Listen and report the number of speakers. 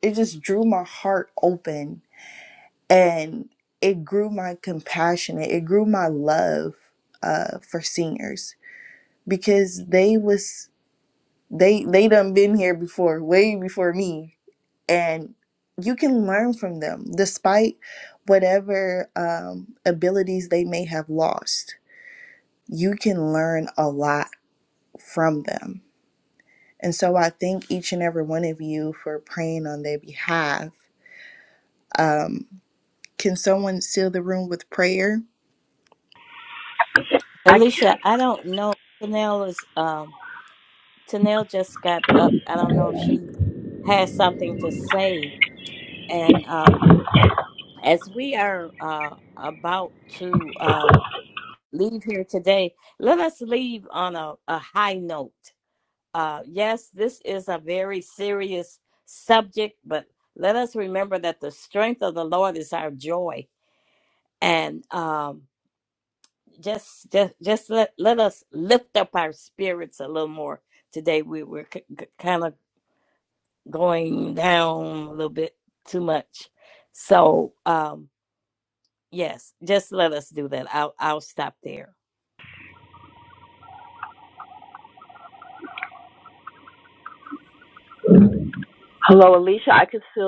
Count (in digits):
3